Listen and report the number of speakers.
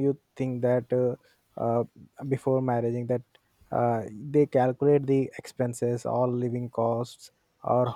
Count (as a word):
one